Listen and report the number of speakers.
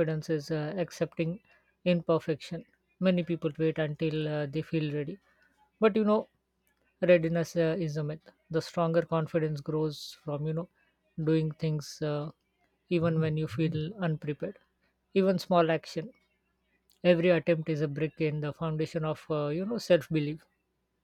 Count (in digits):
1